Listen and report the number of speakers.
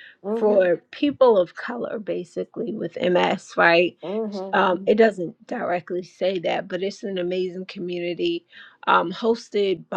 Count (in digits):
2